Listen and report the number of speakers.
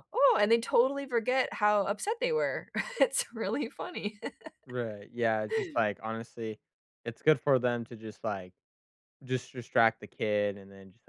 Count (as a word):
two